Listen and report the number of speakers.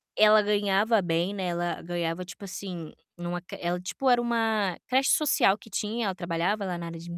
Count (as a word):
one